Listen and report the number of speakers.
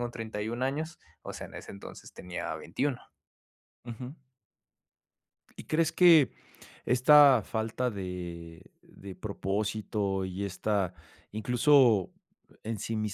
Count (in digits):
2